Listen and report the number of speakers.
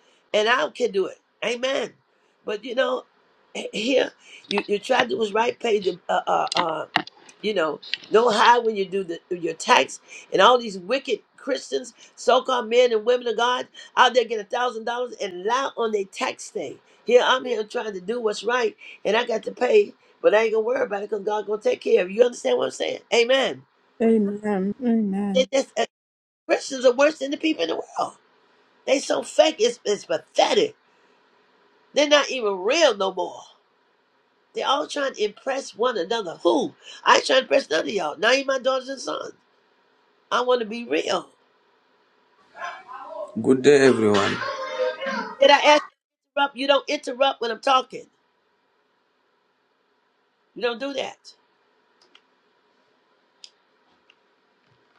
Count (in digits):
3